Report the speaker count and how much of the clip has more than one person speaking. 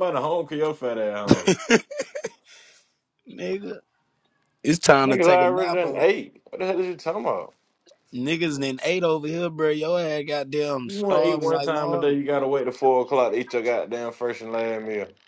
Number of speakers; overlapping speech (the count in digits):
2, about 13%